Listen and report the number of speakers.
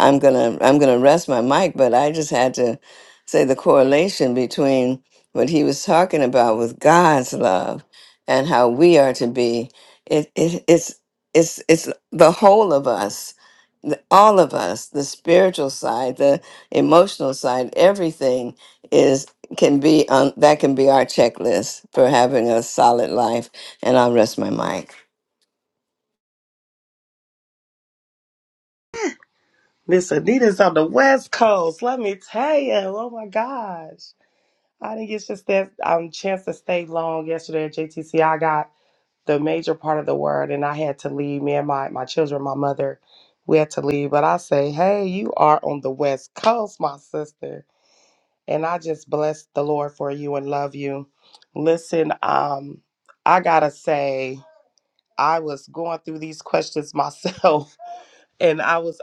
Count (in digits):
2